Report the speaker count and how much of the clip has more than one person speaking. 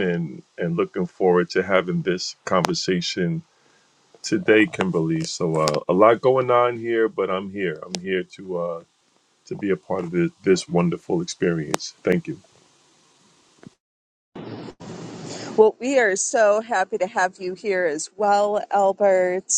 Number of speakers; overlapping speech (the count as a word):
two, no overlap